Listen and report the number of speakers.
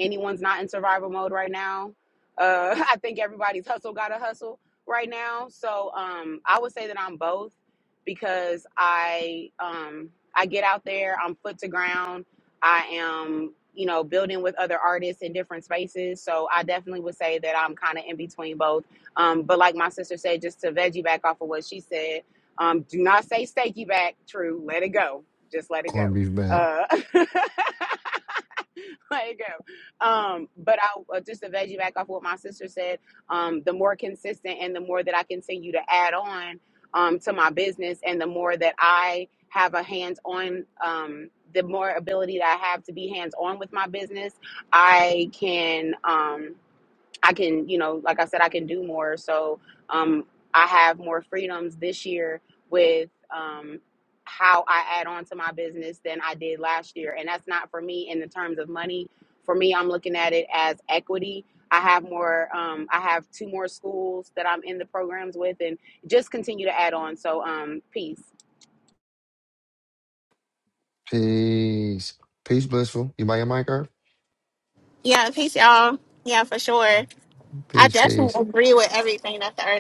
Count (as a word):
three